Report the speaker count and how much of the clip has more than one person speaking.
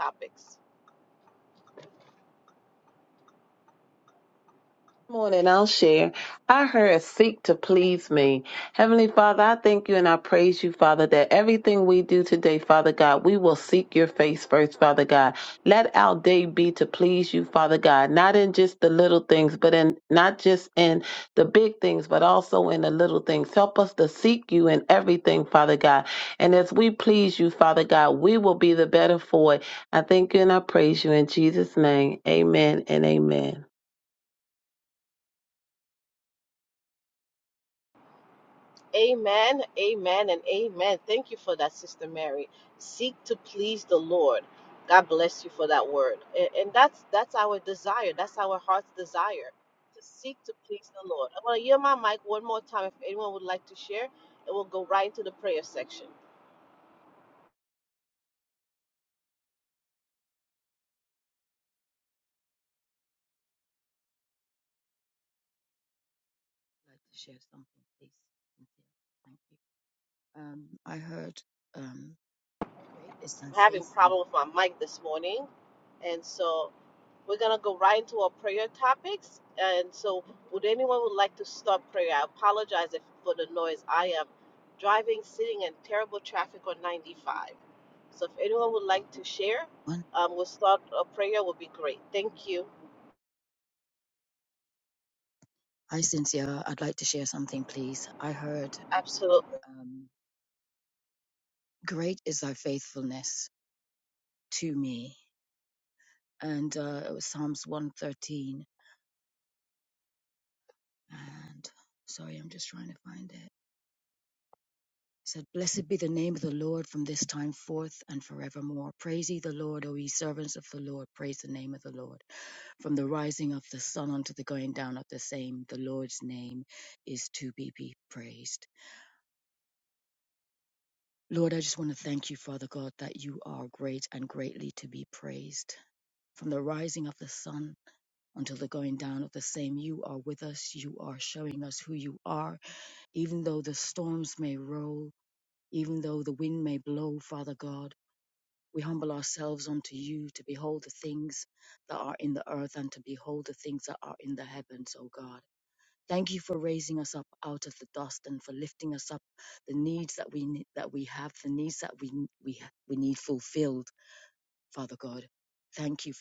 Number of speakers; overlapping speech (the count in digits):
3, under 1%